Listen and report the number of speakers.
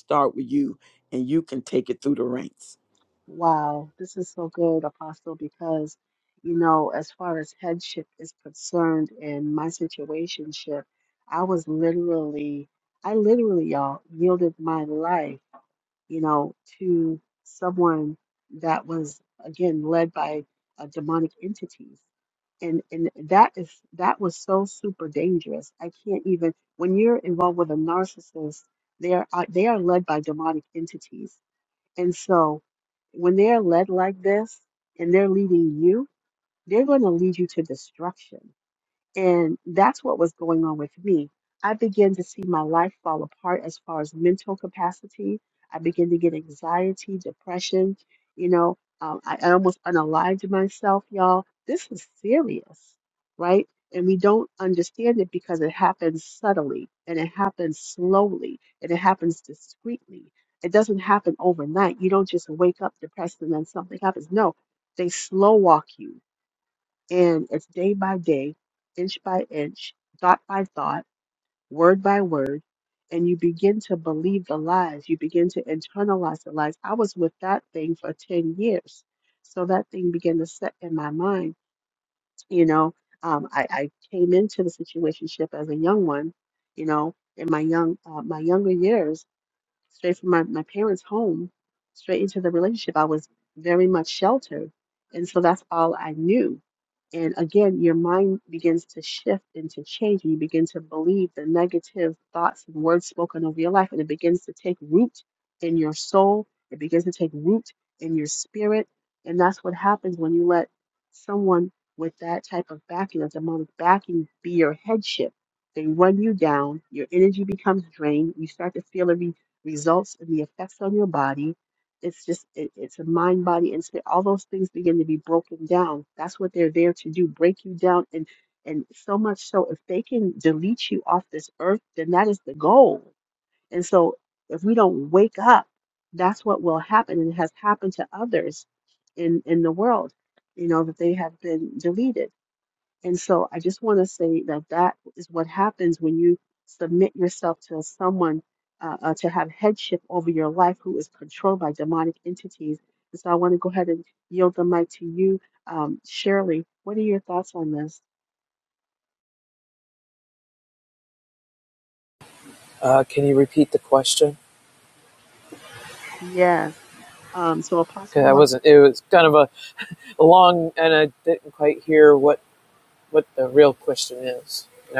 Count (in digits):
3